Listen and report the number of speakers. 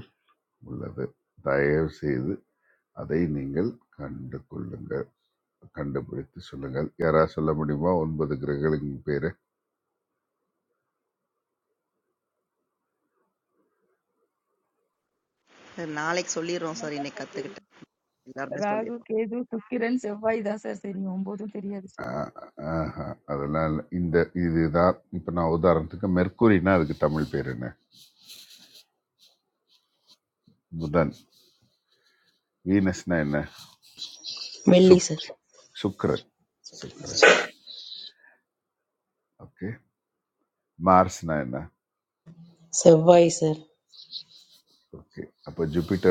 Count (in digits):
4